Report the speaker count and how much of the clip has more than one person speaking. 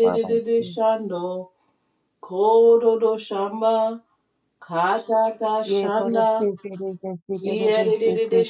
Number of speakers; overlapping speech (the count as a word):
two, about 27%